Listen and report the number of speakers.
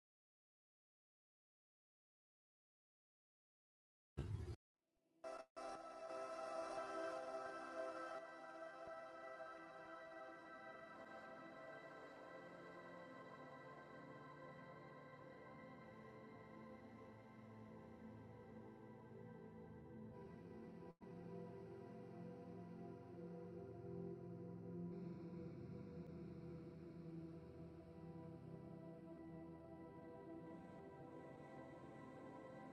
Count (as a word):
zero